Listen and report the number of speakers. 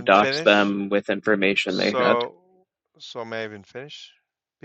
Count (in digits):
2